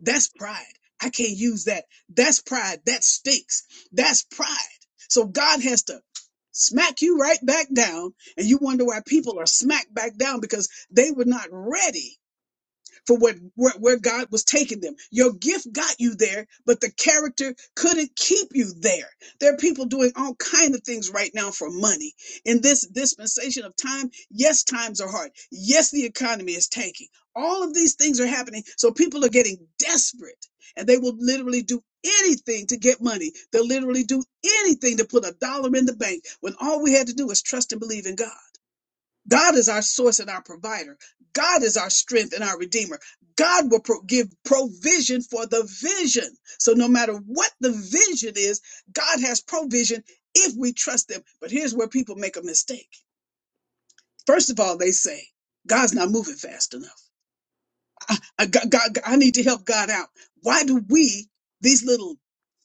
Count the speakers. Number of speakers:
1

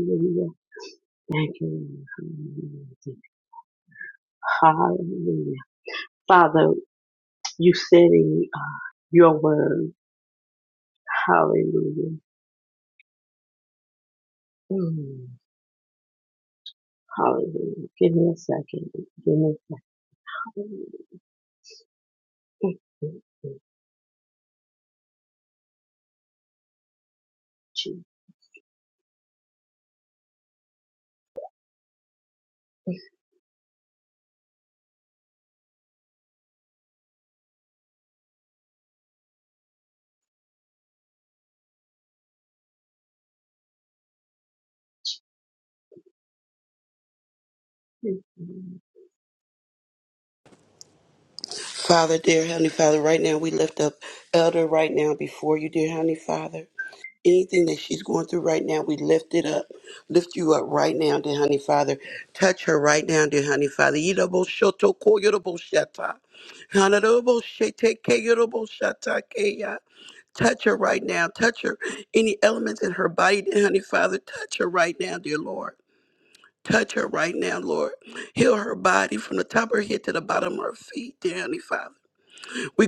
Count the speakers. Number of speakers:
2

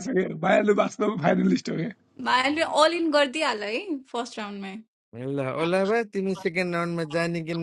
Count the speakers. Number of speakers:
3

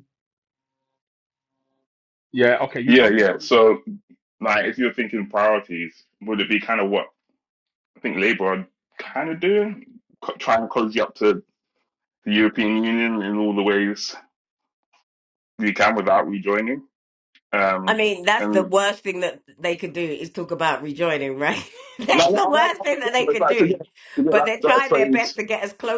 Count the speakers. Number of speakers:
3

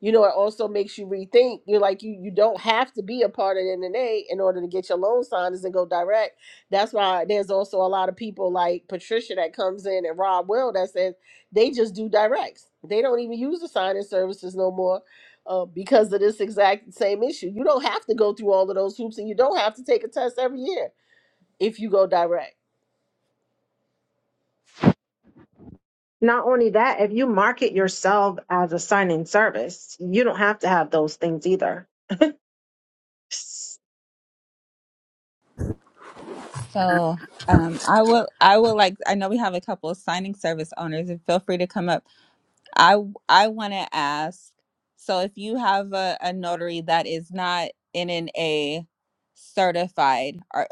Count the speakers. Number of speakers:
3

